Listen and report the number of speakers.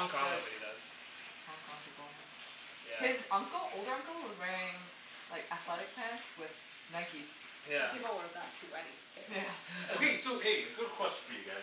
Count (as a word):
four